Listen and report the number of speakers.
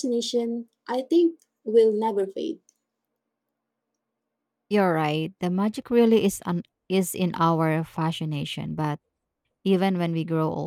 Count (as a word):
two